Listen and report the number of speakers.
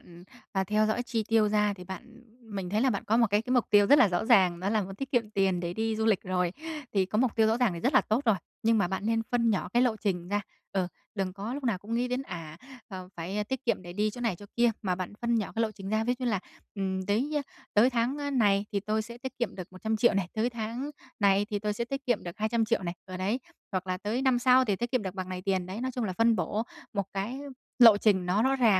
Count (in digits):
1